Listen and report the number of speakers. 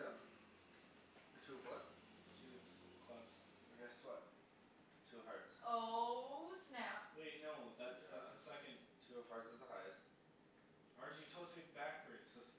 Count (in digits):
3